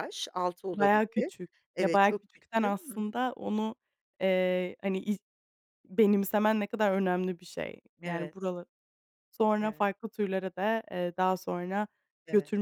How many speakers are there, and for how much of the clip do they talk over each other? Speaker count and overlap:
2, about 15%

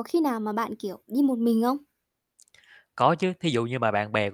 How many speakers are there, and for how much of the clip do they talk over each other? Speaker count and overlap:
2, no overlap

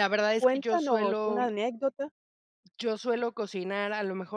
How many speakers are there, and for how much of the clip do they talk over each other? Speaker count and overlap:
2, about 24%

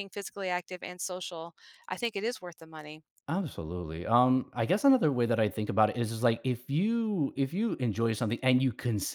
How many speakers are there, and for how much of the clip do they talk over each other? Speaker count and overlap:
2, no overlap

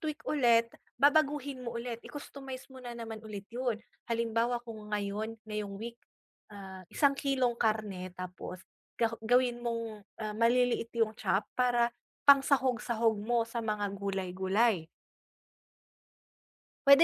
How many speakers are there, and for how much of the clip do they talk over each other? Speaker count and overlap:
1, no overlap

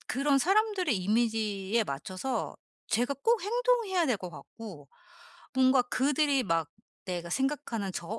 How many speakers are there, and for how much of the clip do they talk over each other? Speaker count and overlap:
1, no overlap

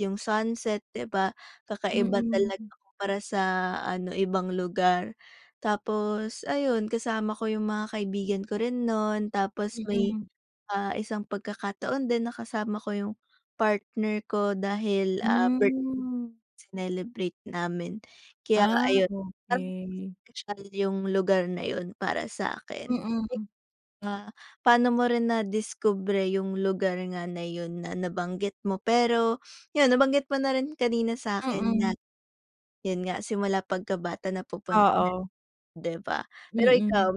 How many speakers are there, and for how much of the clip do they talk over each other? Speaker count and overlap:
2, about 11%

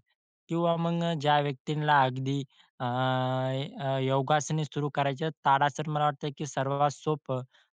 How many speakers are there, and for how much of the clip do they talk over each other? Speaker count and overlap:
1, no overlap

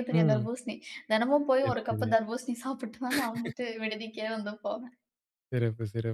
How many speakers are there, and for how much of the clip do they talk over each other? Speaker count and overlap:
2, about 14%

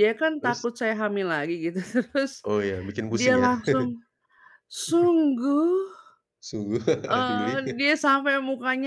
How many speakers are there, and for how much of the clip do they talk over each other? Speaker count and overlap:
2, about 8%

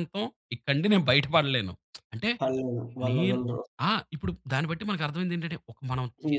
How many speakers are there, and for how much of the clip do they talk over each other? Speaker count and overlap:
2, about 8%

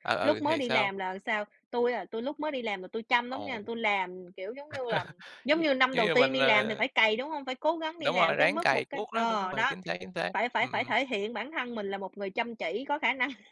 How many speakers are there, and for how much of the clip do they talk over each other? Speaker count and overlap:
2, about 32%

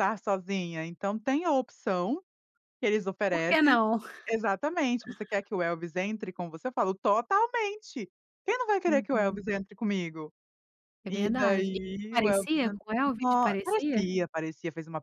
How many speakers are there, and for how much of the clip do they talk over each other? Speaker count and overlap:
2, about 21%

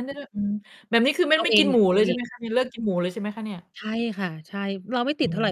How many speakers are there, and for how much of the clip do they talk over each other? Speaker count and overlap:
2, about 16%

